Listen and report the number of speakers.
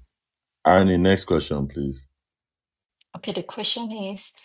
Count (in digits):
2